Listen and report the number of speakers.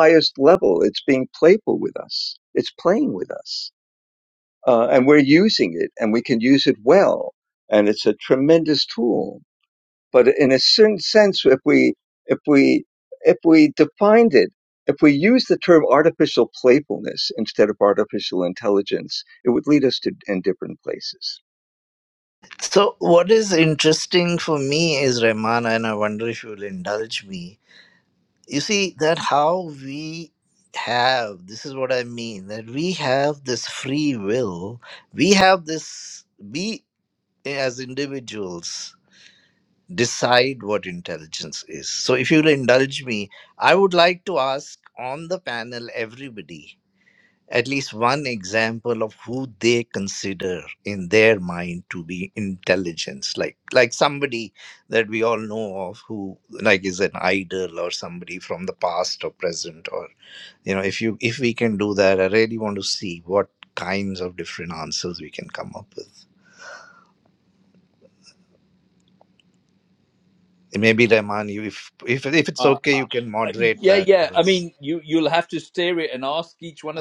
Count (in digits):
3